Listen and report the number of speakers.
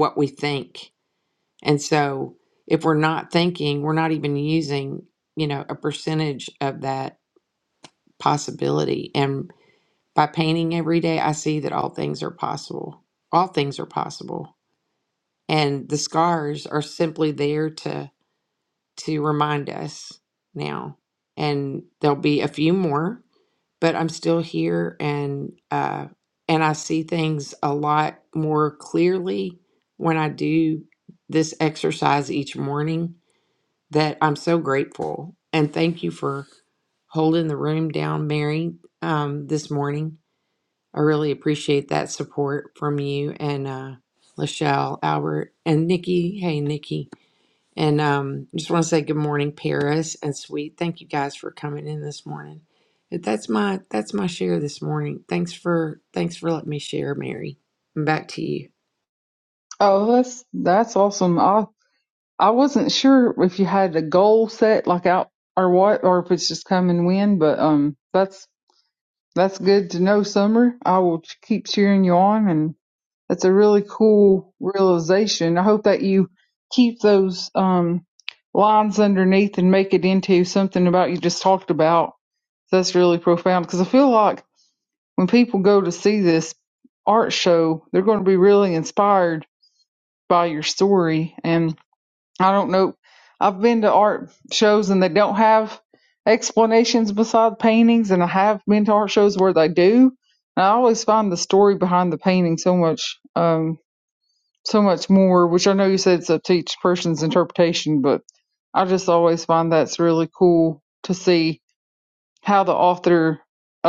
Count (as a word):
two